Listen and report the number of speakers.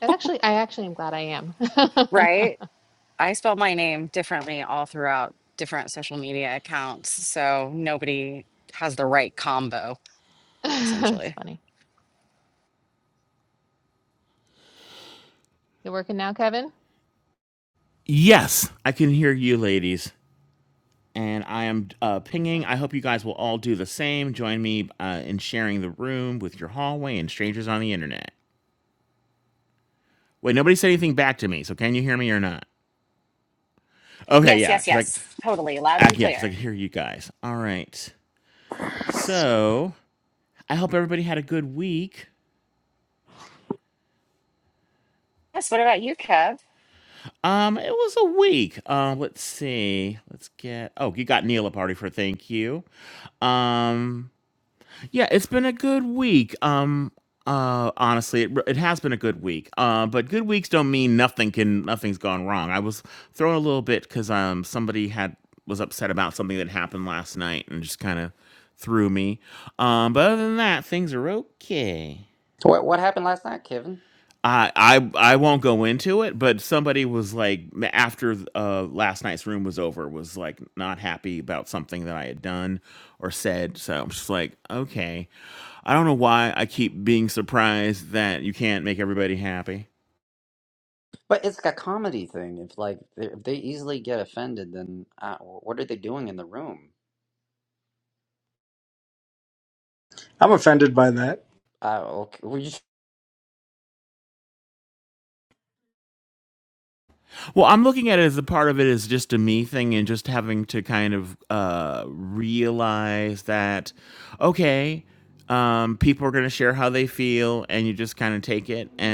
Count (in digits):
5